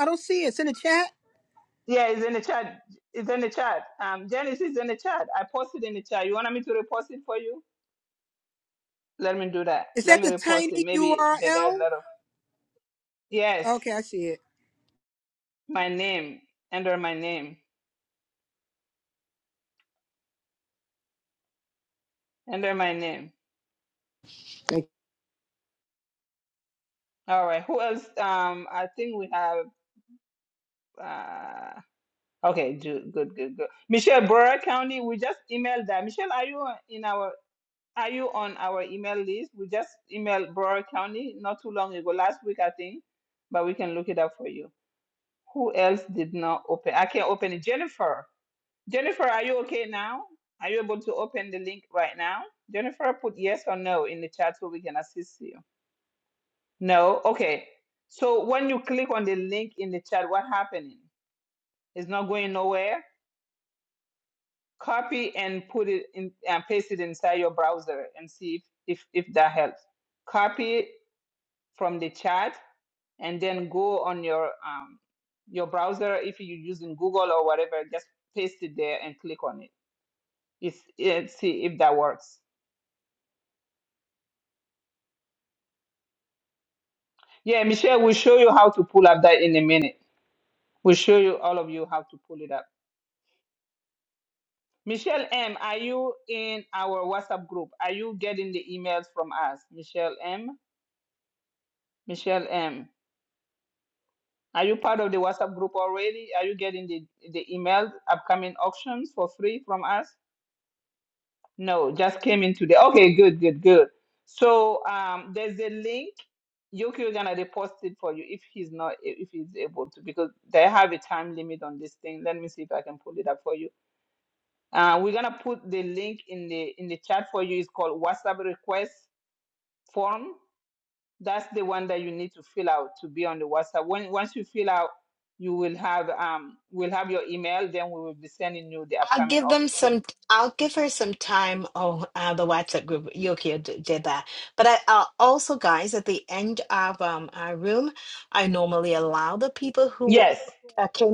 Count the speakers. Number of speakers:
3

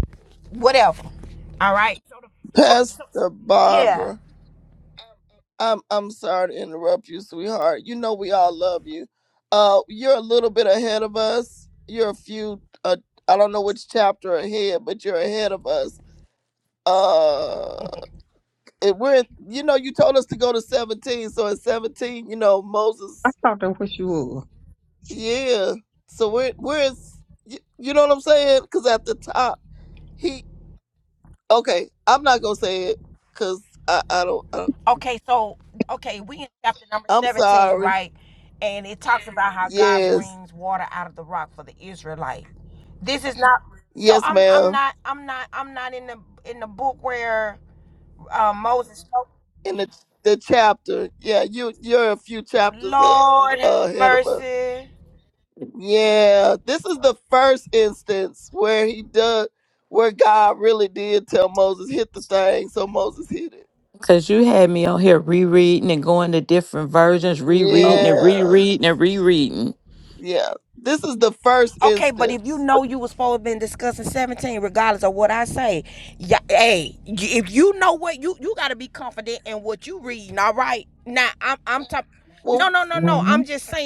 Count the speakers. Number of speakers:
4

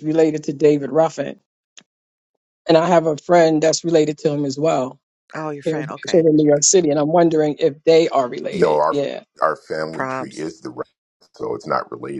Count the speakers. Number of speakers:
3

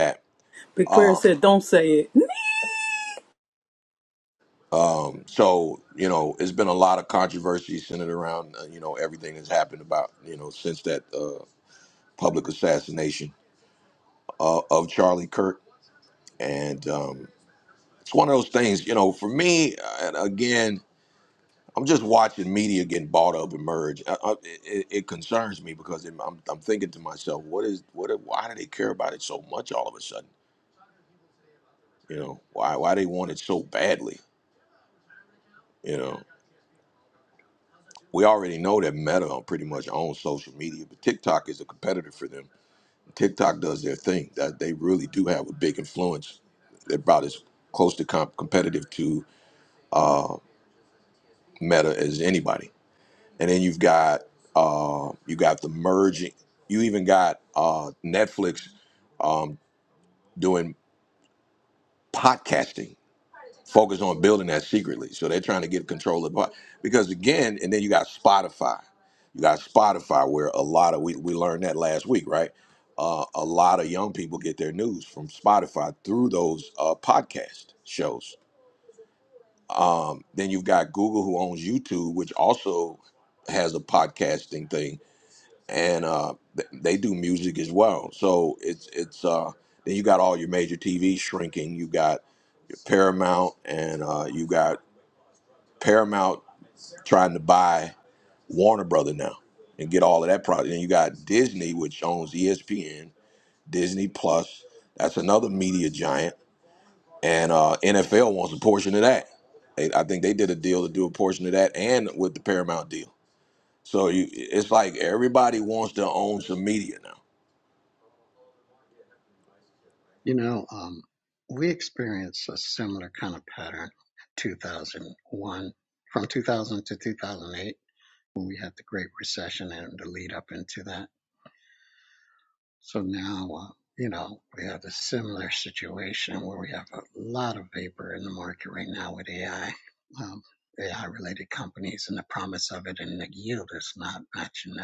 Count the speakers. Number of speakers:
3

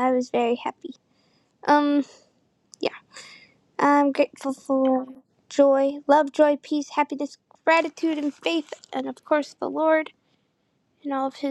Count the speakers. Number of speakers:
1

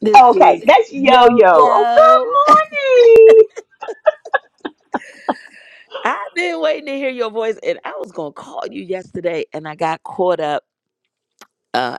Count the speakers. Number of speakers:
2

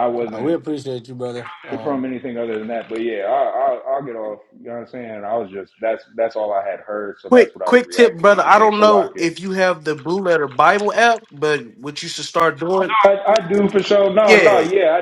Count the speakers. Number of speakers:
3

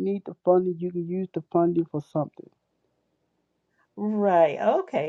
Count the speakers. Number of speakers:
2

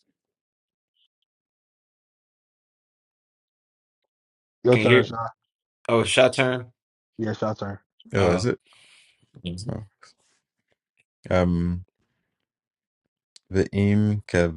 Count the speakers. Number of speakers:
3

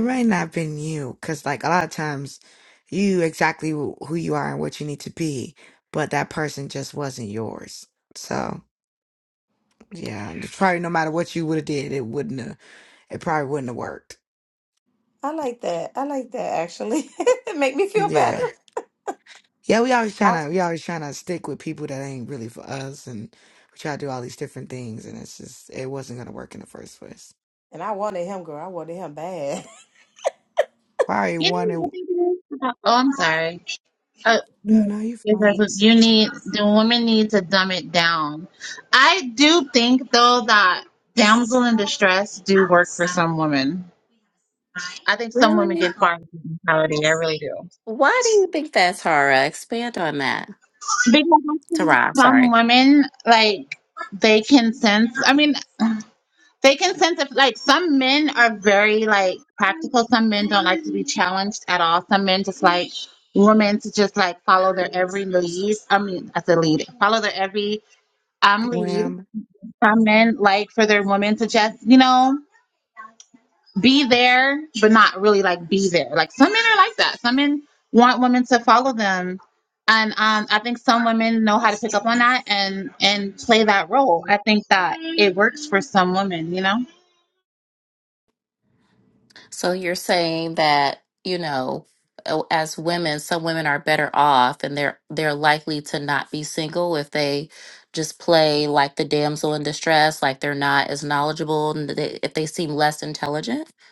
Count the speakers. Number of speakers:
4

